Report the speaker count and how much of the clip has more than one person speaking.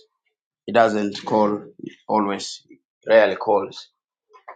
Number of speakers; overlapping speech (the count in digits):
1, no overlap